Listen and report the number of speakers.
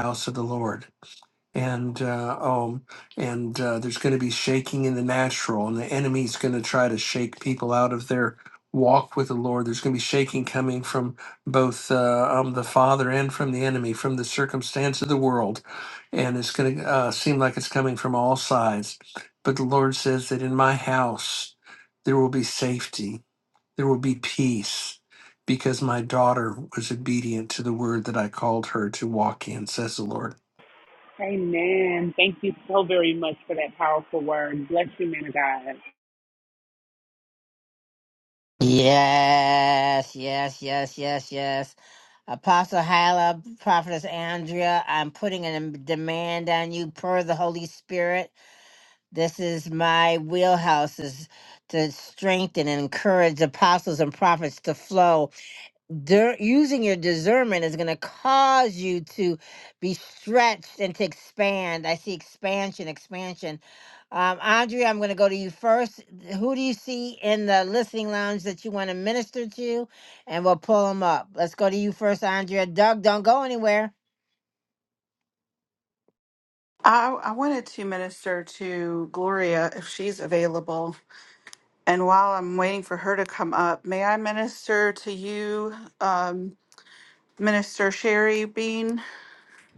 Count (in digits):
4